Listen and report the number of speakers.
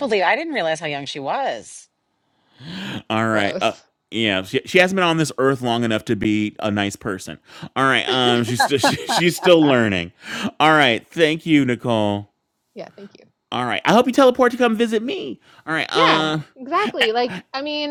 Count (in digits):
3